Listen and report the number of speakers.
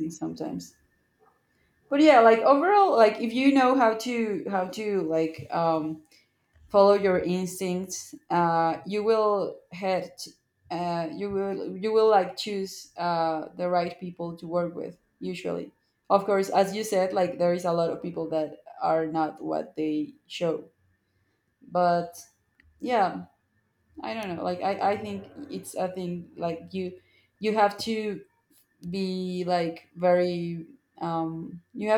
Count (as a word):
one